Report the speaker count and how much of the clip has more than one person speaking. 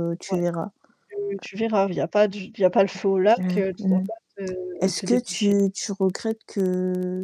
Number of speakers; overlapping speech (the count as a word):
two, about 22%